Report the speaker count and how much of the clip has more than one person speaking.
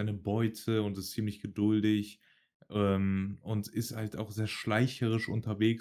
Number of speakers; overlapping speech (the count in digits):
1, no overlap